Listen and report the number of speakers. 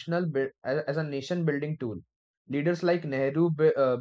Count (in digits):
1